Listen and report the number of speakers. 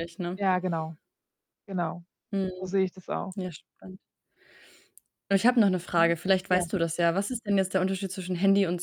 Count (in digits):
2